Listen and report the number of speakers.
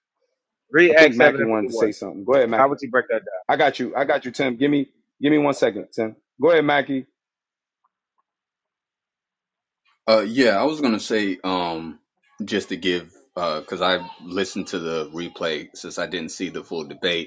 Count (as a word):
three